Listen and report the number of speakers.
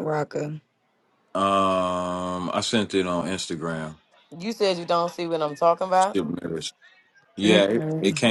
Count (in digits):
3